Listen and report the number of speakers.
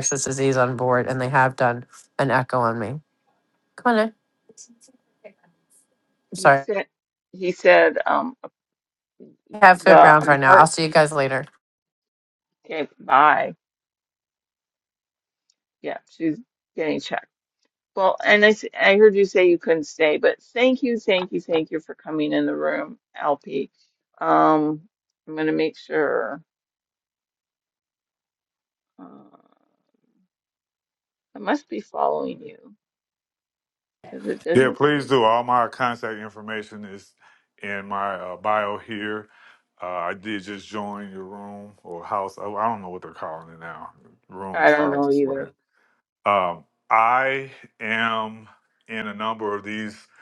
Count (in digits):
3